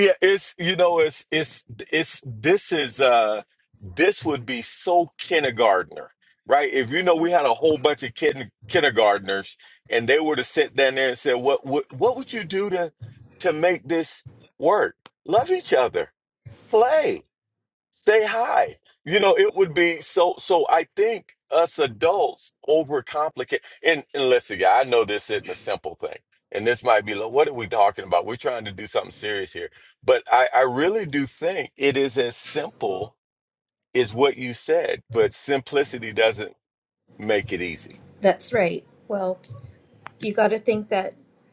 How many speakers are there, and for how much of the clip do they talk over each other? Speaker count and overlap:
two, no overlap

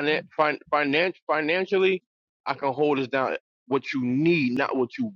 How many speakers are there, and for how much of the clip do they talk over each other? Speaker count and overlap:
one, no overlap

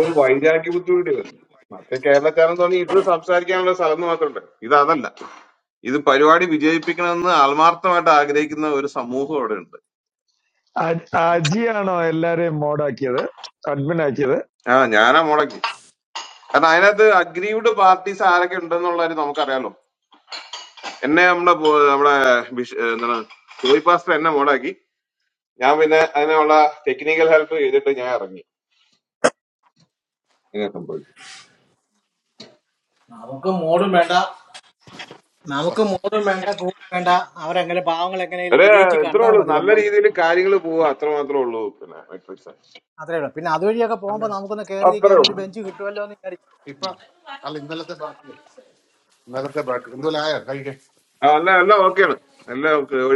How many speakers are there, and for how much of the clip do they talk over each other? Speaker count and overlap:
four, about 4%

